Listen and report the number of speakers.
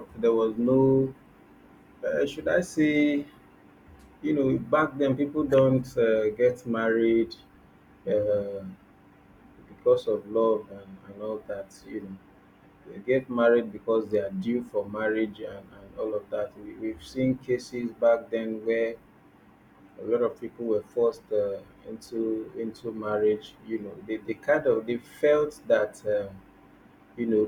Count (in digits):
1